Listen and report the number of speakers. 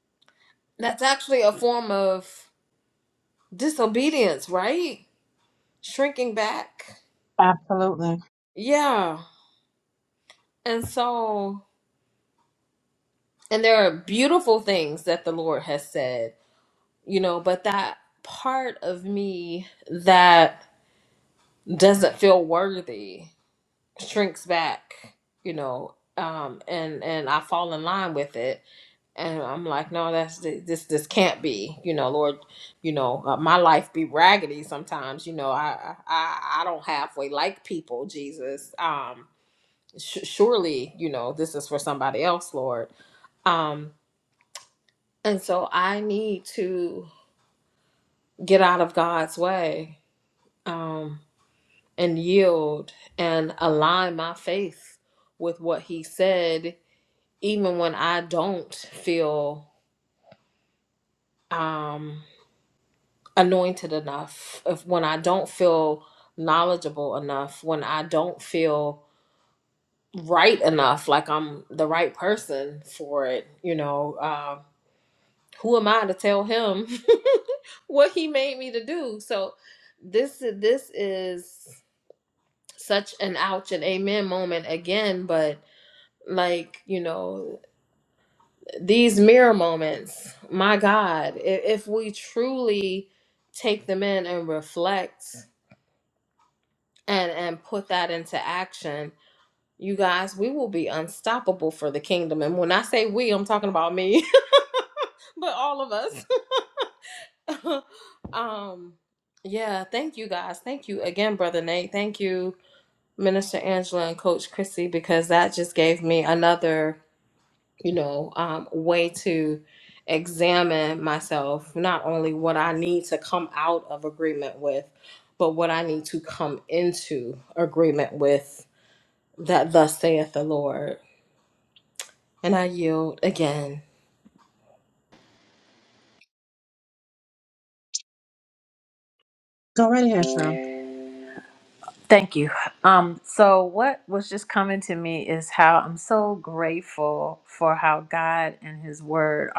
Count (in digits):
3